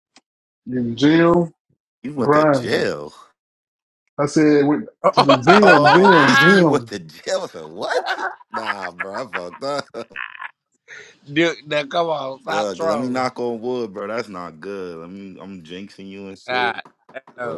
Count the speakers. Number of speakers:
three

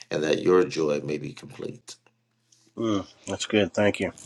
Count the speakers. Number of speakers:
two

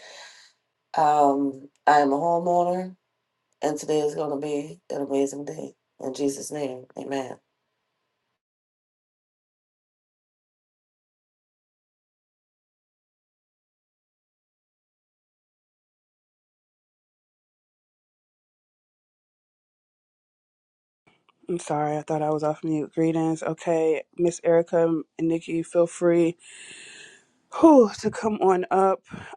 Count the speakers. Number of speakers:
two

